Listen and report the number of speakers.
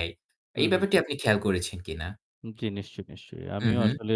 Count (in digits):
2